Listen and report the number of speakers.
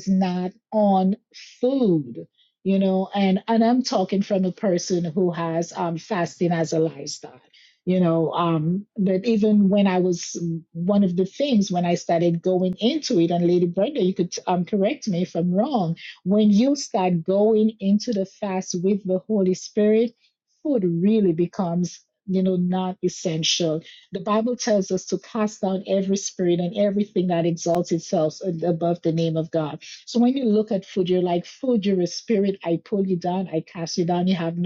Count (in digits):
1